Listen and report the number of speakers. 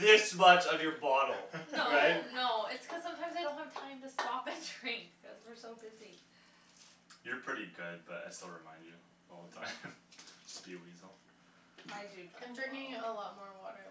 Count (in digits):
4